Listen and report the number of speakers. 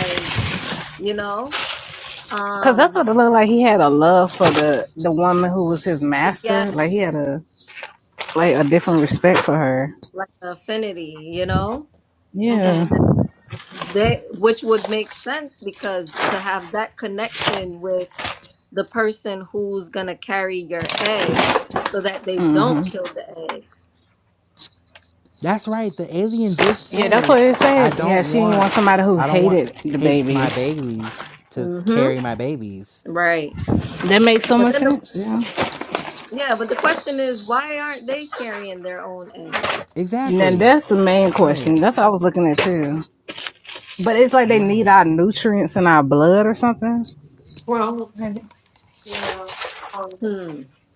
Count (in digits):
4